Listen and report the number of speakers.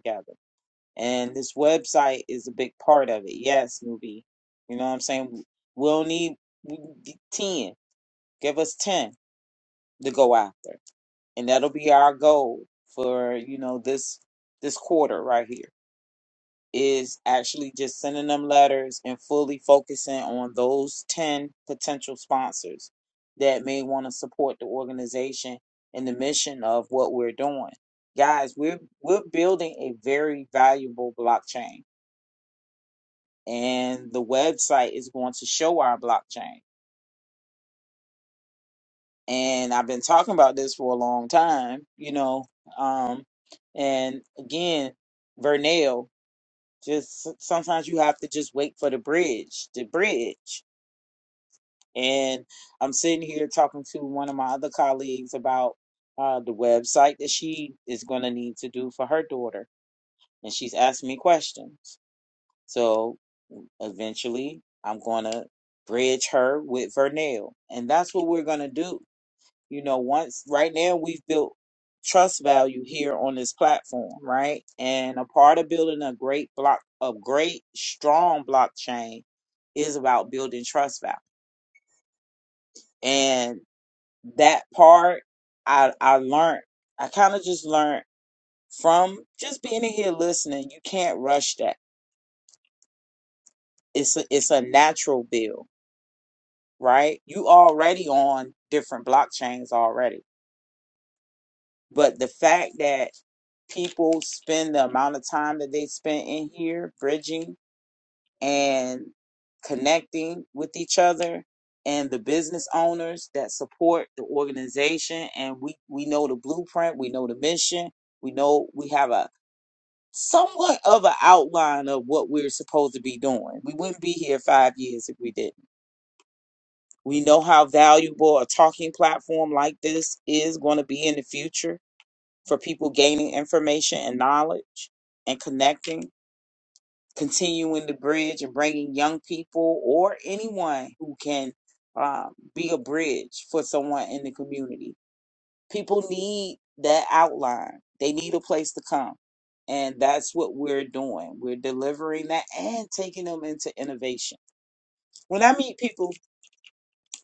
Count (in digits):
1